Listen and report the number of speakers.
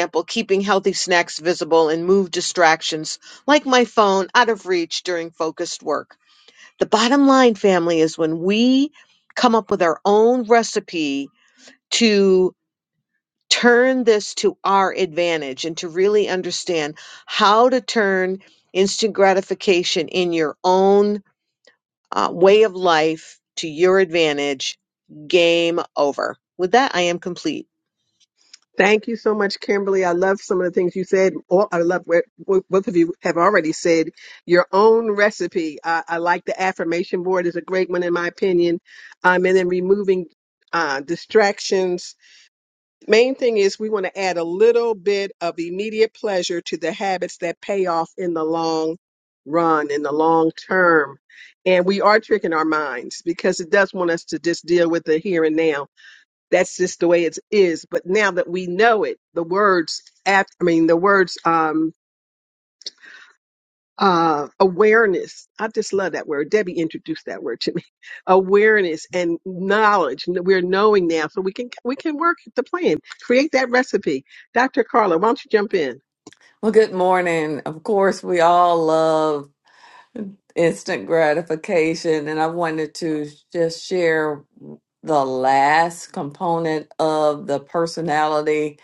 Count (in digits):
3